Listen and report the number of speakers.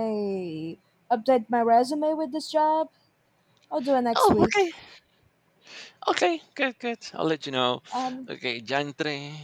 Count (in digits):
2